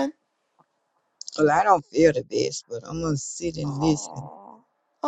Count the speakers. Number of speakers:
2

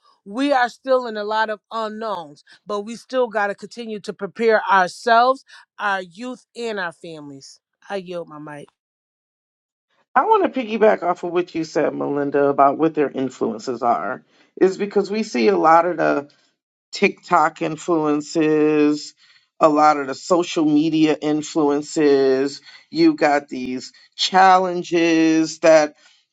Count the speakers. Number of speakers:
2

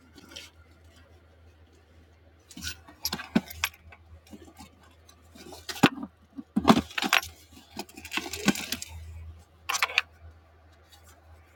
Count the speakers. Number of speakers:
0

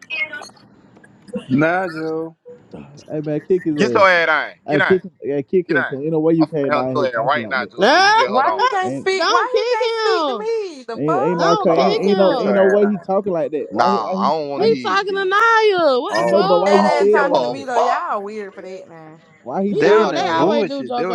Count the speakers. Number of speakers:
5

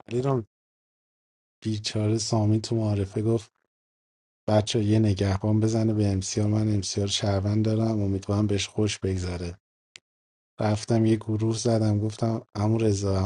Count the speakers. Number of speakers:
1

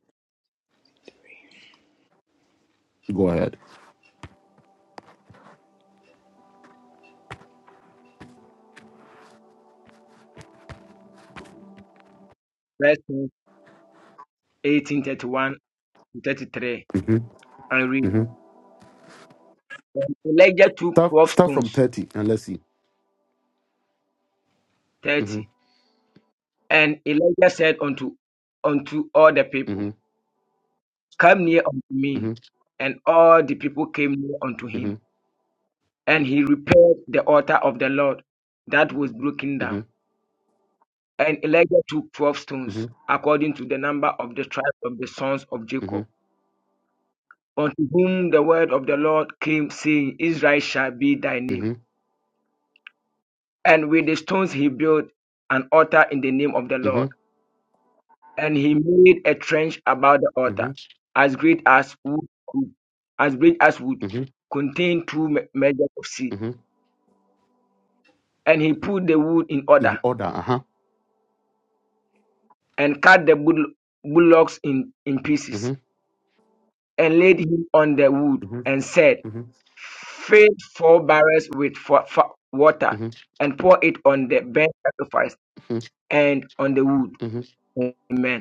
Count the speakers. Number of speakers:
2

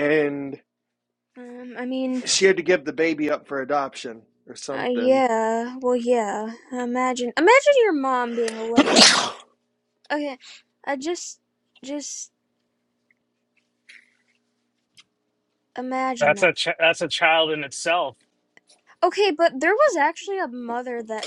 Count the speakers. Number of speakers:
3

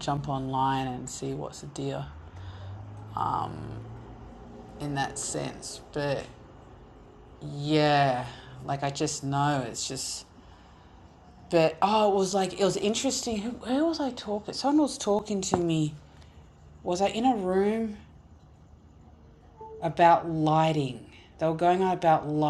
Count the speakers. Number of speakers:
1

